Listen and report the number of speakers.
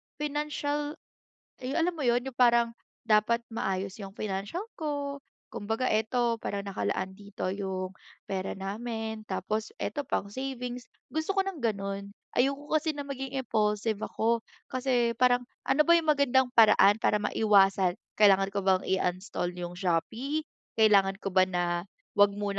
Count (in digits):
1